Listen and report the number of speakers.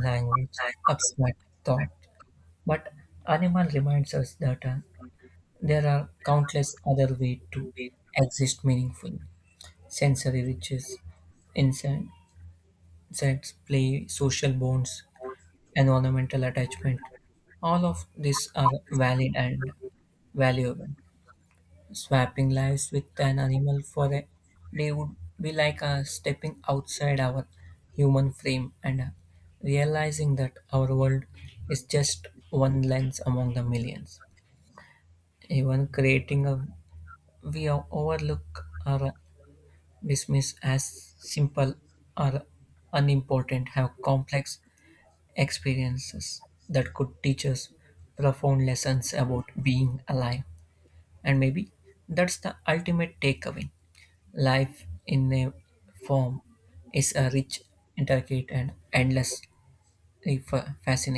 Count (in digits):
1